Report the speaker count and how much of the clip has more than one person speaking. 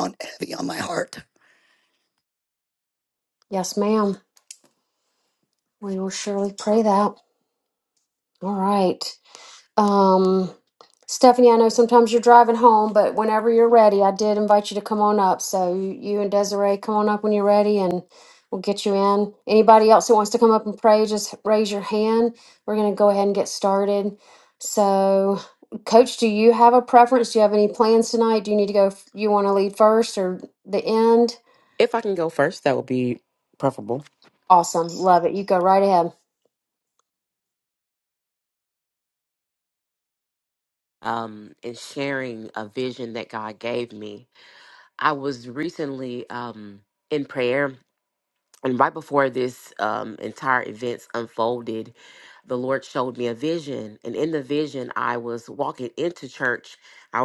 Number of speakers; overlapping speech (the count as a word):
three, no overlap